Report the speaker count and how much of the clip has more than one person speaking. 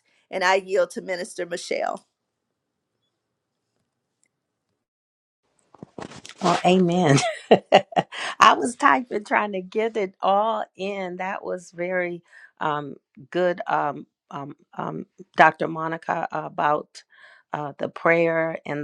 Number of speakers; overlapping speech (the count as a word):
two, no overlap